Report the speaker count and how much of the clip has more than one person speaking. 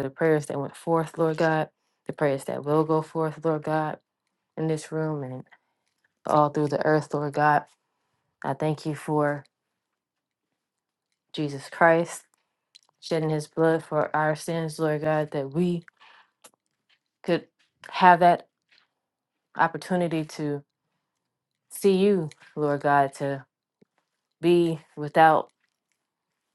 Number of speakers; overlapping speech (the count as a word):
one, no overlap